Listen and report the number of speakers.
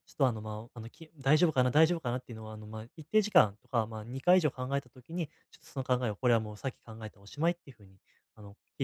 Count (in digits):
1